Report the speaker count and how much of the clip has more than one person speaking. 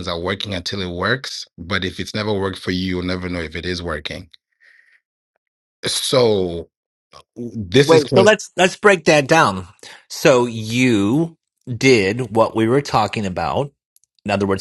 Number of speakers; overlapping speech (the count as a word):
two, about 3%